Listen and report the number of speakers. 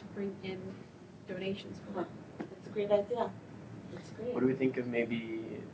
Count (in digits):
3